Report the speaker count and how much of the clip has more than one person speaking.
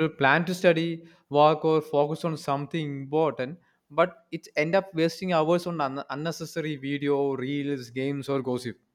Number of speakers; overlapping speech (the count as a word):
one, no overlap